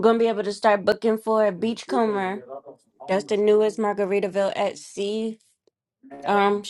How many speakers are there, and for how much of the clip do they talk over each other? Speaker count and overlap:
1, no overlap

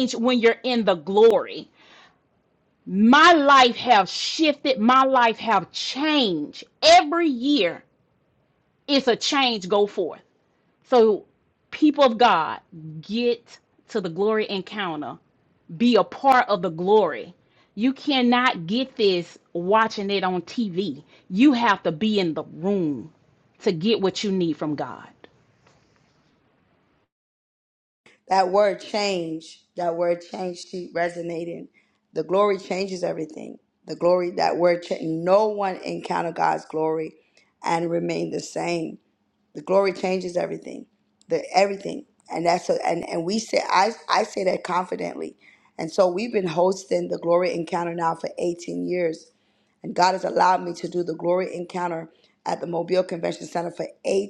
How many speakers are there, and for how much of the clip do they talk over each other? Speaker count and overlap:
2, no overlap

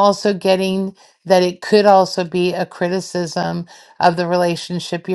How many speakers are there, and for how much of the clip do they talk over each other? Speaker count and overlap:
1, no overlap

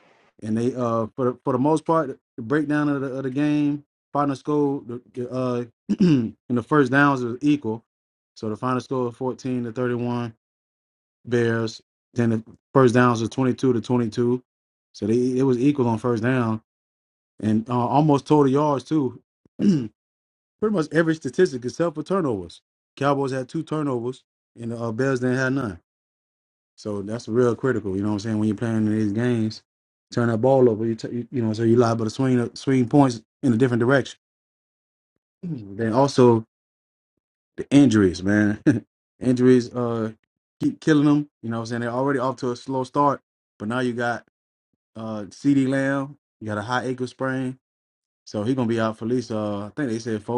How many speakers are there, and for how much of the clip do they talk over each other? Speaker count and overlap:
1, no overlap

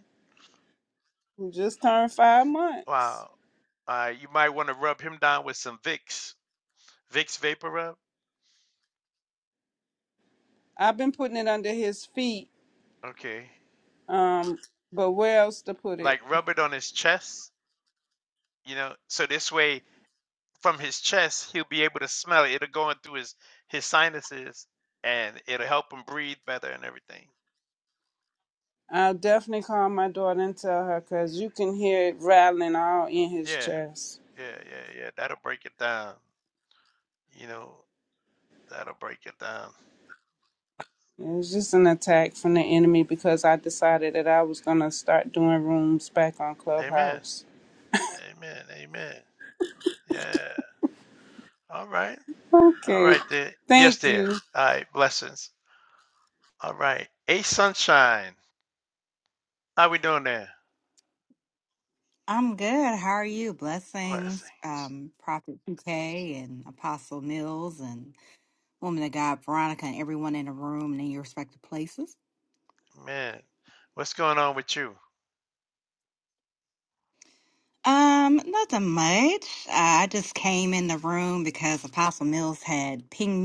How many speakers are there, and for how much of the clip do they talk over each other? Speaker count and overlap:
3, about 3%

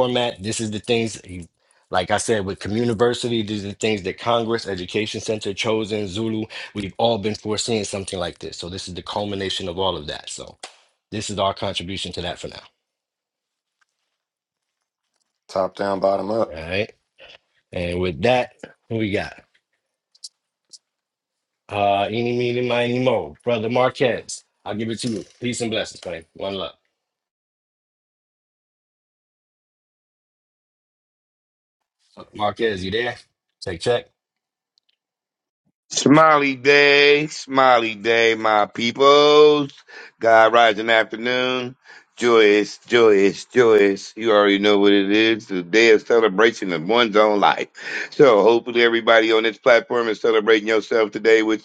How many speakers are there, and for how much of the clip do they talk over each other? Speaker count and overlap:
3, under 1%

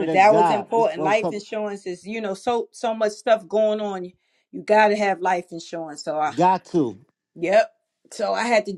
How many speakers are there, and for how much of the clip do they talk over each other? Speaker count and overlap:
2, about 16%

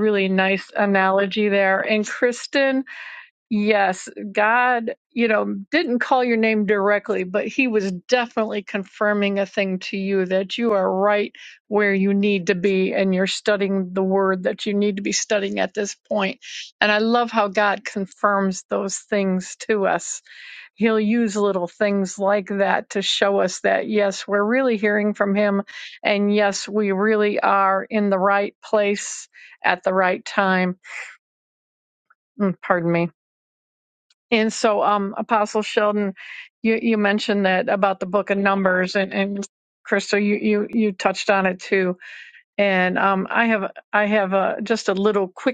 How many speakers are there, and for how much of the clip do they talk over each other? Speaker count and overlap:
1, no overlap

